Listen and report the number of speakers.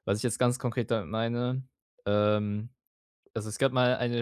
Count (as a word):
one